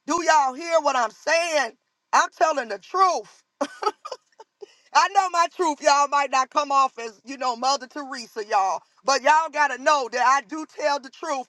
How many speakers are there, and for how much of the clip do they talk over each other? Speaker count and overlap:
1, no overlap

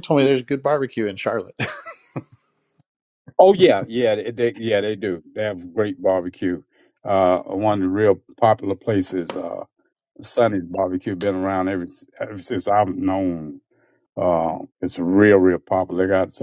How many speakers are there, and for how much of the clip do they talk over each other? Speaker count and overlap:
2, no overlap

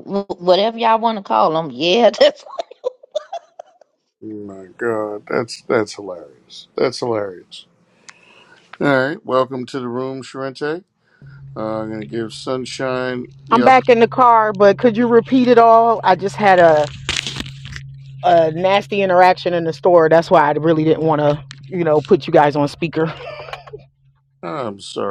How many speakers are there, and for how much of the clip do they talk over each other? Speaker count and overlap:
3, about 1%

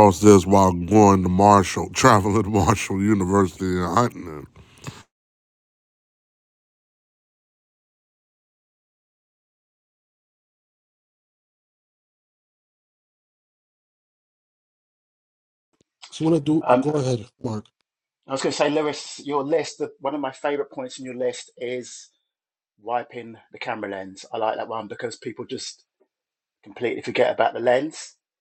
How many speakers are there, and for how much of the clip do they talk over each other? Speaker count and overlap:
3, about 1%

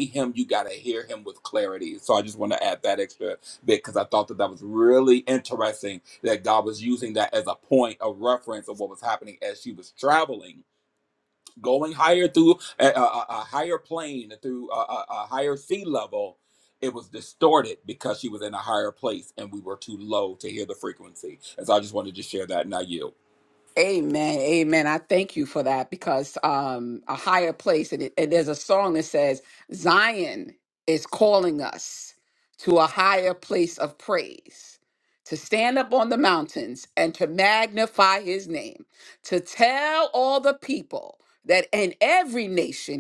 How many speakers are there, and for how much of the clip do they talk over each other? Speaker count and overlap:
2, no overlap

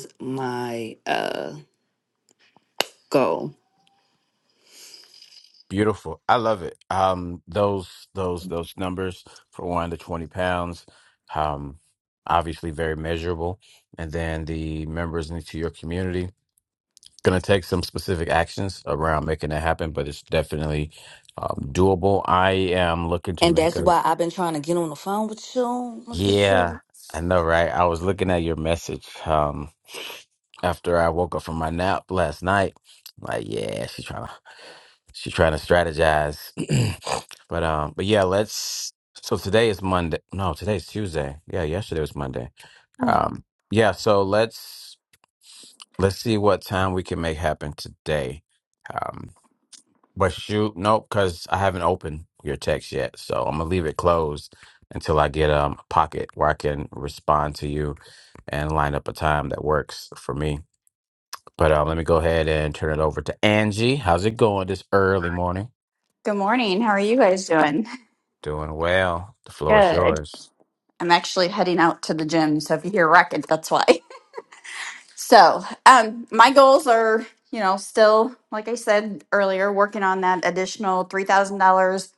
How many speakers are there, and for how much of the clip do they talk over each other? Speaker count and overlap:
3, about 2%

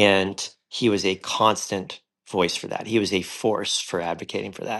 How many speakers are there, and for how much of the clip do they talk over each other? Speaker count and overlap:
1, no overlap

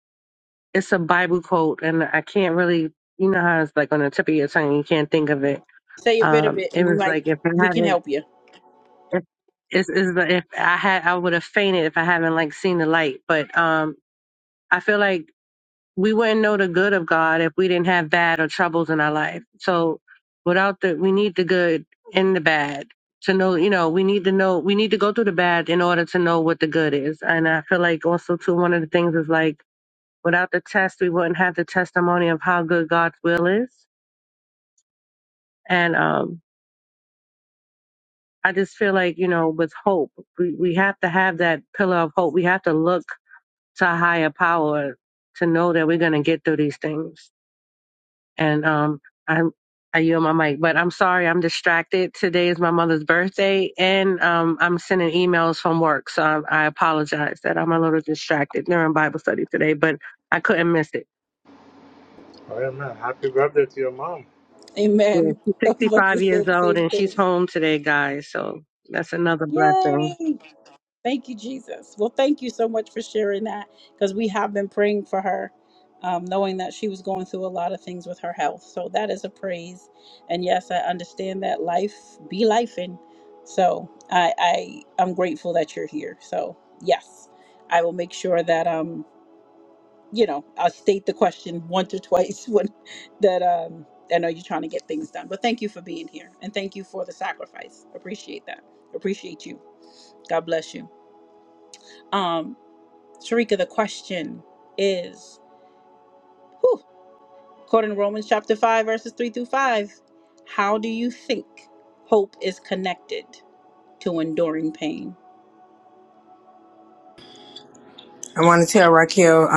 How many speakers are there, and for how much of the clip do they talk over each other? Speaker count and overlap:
4, about 3%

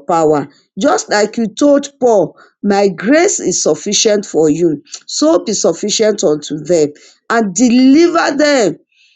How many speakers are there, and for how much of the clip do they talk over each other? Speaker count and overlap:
1, no overlap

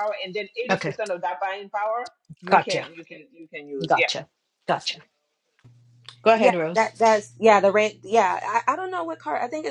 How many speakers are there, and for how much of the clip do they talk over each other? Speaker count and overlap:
3, about 15%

